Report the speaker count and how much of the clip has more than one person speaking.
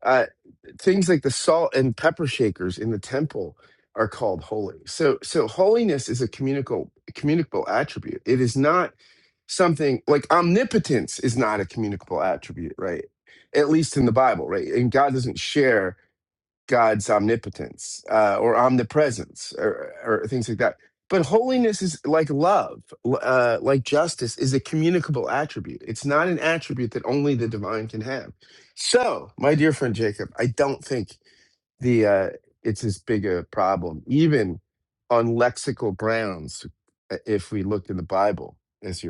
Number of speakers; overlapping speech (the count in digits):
1, no overlap